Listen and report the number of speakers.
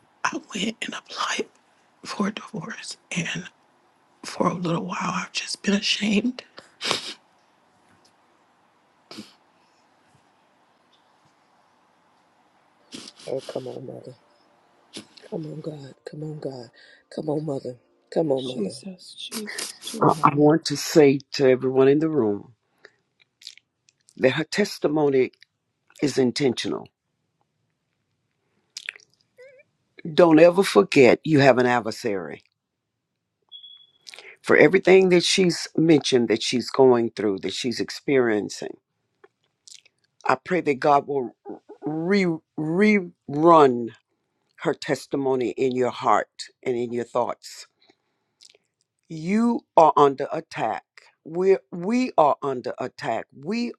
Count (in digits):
4